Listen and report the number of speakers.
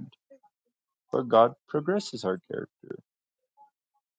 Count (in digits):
1